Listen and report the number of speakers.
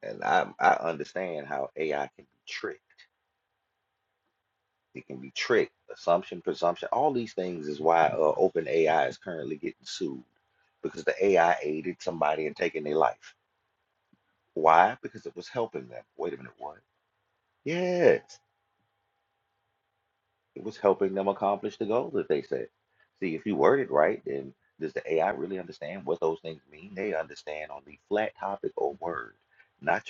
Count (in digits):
1